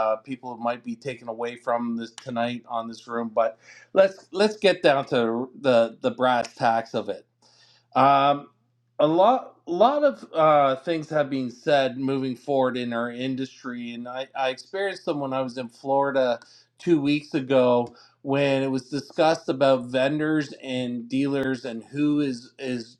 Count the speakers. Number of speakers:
1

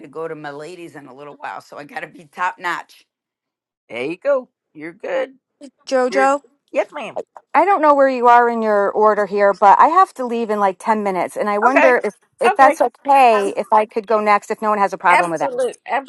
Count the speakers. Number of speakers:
3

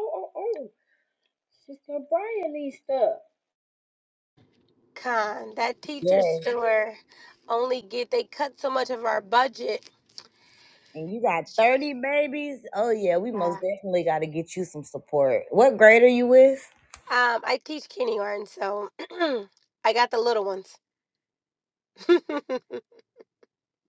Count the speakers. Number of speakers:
3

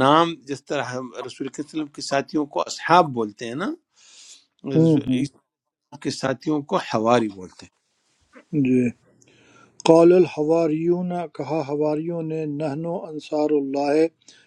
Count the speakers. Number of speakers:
2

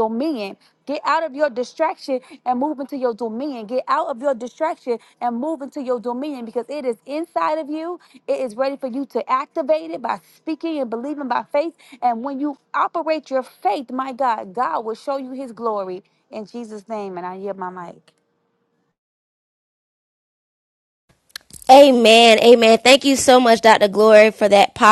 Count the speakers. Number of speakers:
2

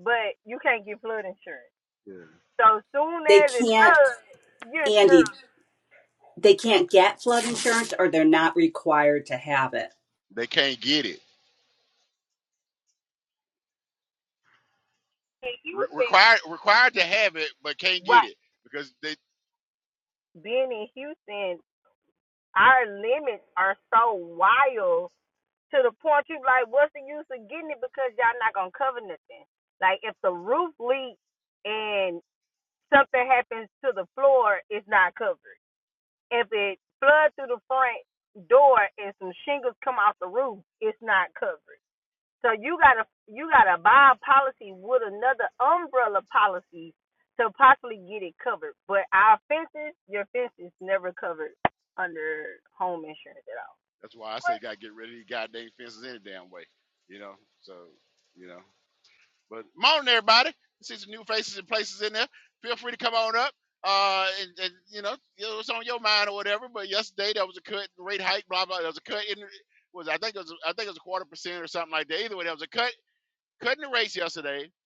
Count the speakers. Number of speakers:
3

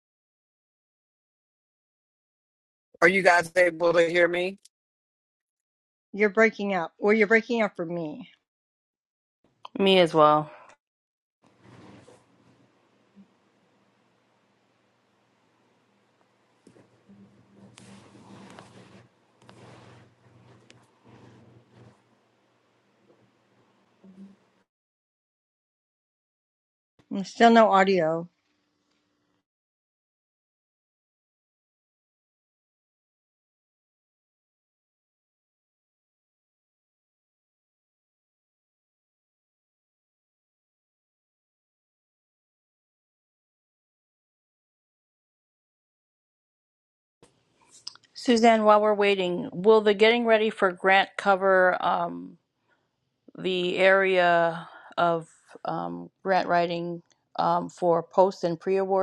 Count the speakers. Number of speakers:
3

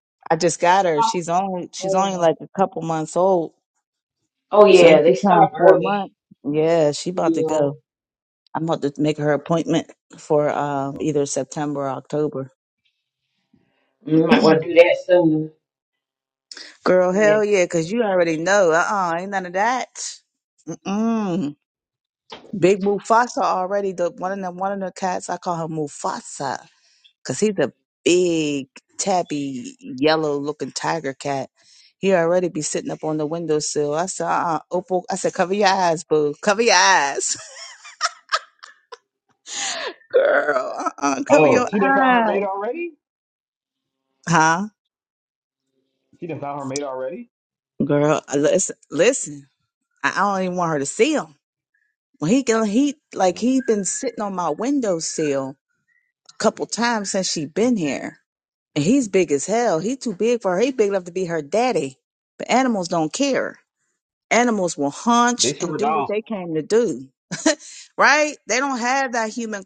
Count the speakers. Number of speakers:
3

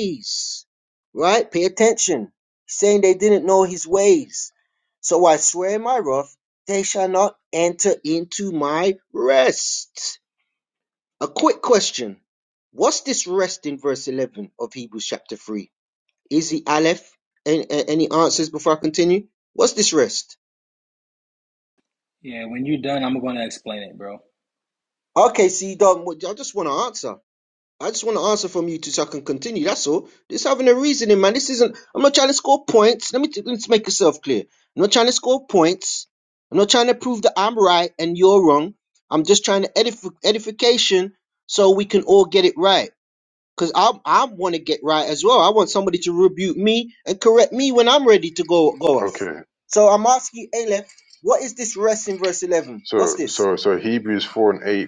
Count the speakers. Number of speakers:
3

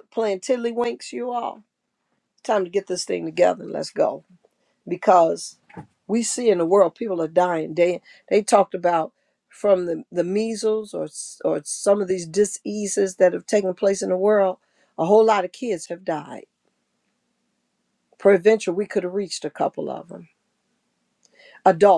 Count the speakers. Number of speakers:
1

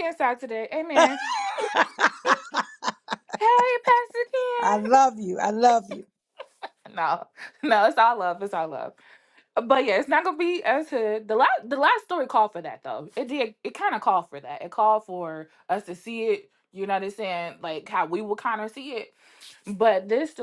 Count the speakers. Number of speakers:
2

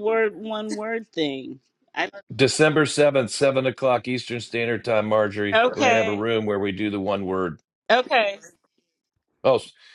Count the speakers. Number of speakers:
2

